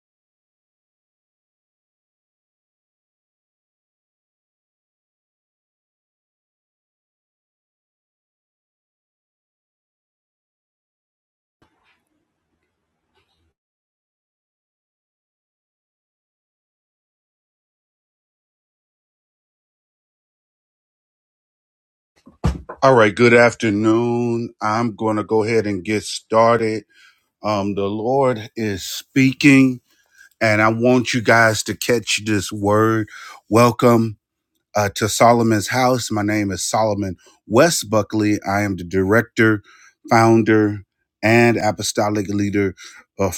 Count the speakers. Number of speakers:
one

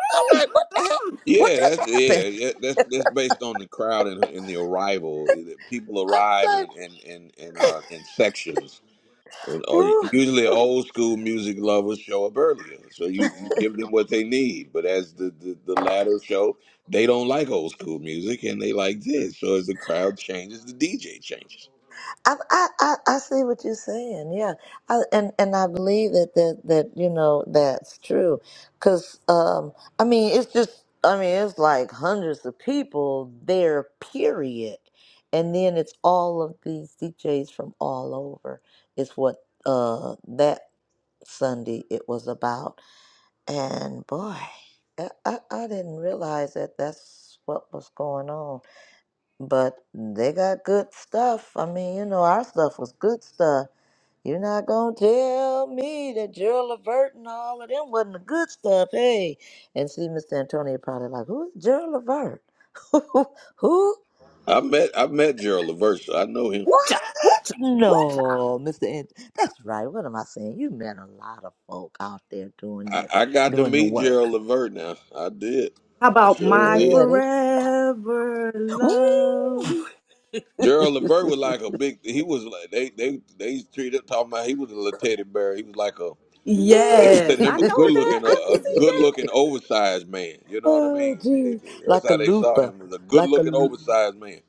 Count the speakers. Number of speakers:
three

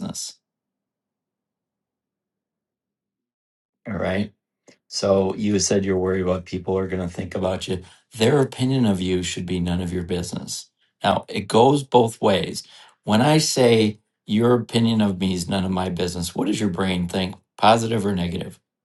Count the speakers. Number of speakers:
one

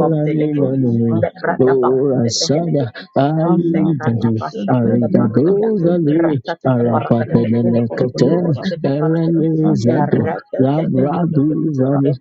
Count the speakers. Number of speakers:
three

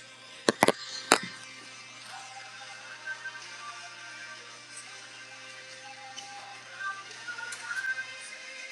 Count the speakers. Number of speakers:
zero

